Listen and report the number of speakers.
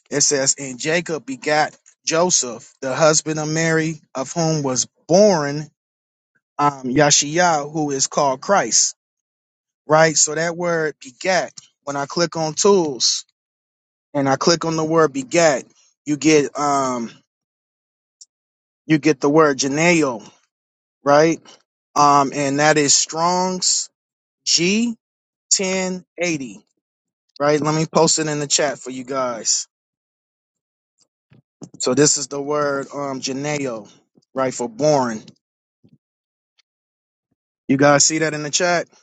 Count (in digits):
1